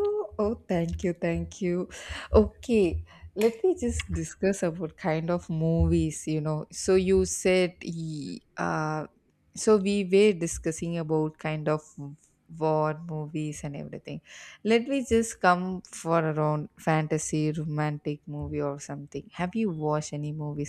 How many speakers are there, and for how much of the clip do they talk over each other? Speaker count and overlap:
one, no overlap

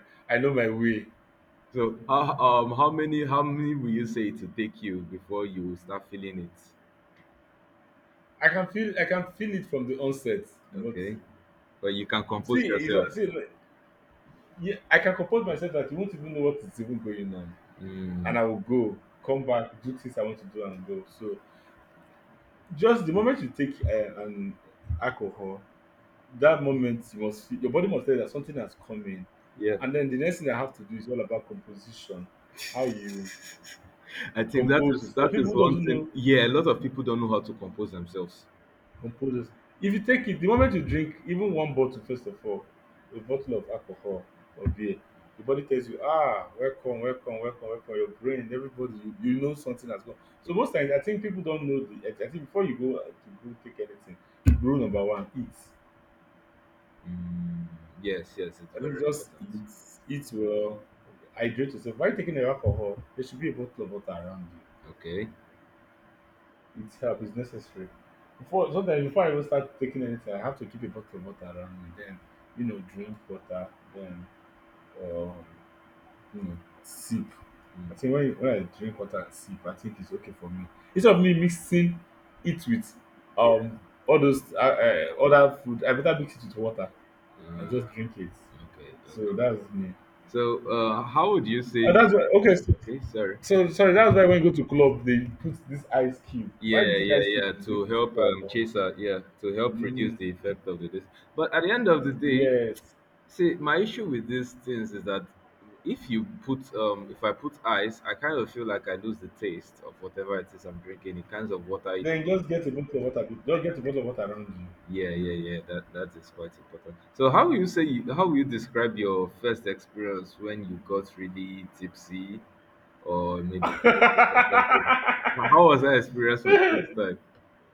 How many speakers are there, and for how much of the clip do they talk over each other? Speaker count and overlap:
two, about 5%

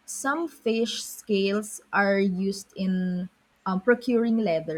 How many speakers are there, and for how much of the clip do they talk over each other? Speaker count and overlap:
one, no overlap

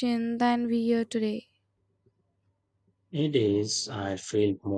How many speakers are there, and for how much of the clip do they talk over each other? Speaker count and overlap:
two, no overlap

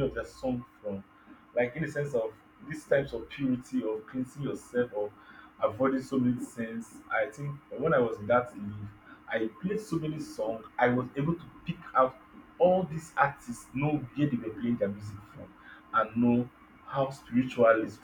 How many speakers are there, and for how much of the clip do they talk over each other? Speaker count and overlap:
one, no overlap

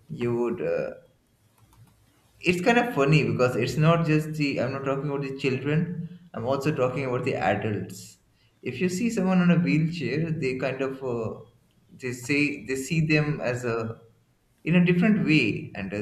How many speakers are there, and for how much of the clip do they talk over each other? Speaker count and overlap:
one, no overlap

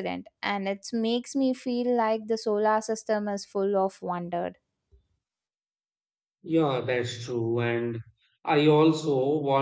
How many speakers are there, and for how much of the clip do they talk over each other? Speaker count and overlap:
two, no overlap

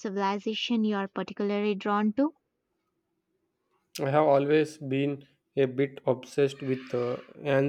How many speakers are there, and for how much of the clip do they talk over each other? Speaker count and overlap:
two, no overlap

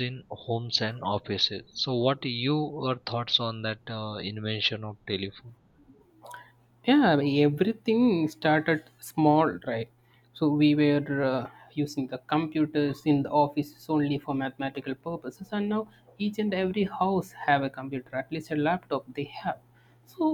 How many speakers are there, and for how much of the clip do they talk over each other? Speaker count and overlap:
two, no overlap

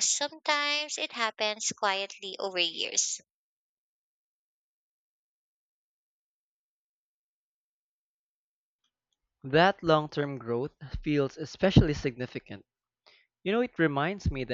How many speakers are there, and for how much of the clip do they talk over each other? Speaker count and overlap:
two, no overlap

